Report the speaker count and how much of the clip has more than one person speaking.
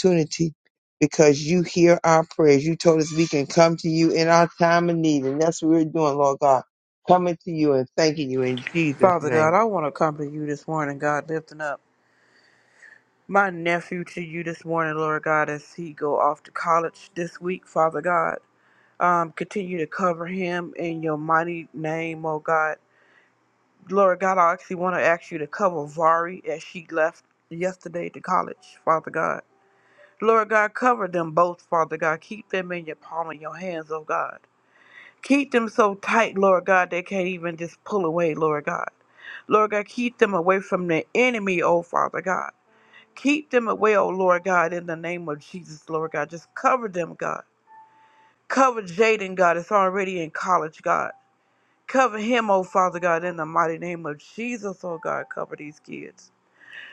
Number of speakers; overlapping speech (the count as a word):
two, about 1%